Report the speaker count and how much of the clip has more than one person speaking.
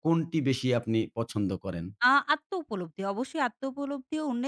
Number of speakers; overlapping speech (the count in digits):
2, no overlap